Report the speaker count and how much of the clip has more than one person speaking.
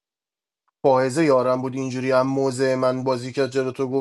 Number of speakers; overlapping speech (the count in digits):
1, no overlap